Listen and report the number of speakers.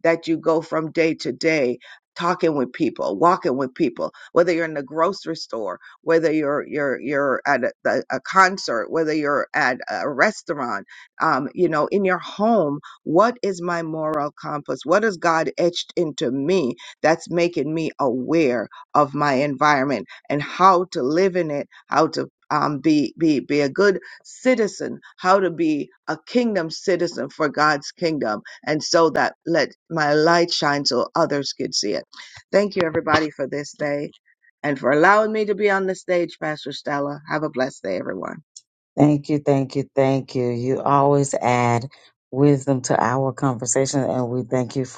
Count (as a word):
two